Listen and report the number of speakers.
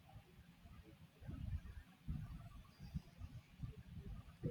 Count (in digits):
0